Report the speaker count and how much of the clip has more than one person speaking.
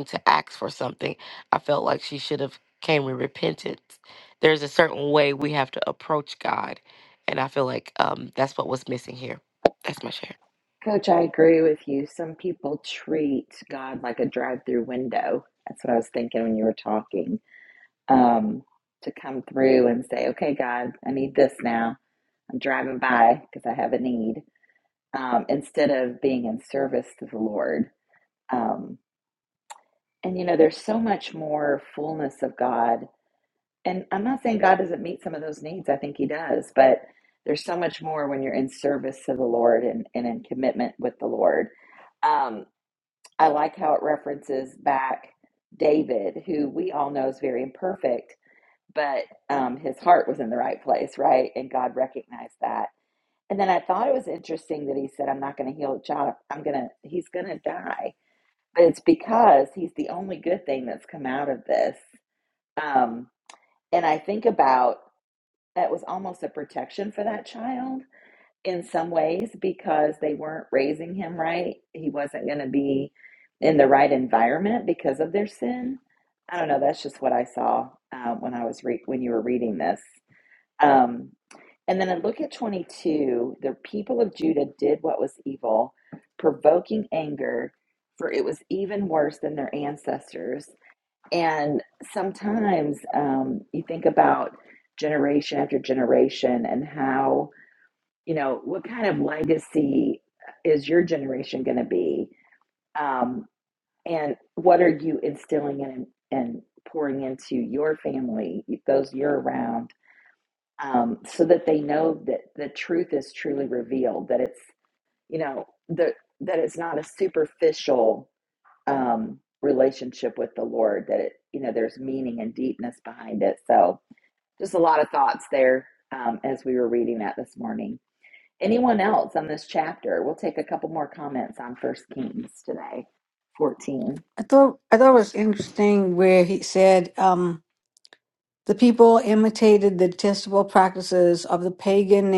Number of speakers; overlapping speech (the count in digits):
3, no overlap